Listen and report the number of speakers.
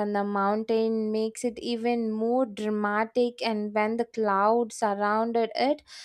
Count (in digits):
1